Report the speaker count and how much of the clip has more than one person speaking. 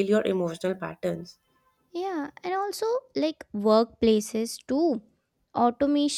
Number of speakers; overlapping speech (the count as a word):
two, no overlap